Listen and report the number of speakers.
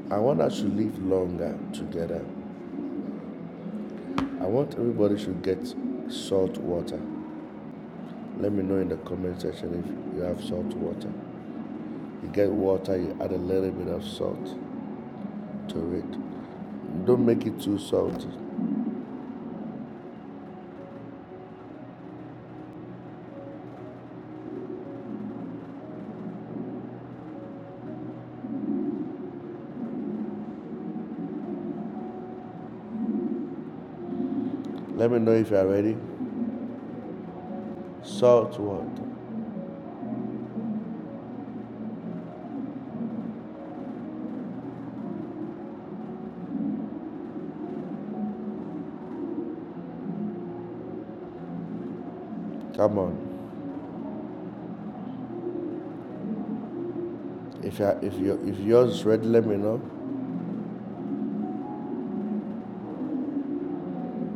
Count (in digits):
1